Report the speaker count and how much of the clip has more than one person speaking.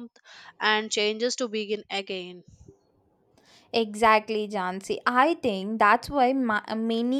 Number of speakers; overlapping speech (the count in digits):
2, no overlap